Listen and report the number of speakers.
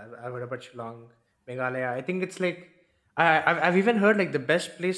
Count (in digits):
1